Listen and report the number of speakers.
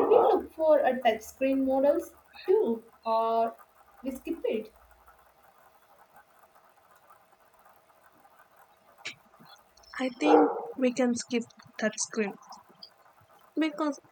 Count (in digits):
2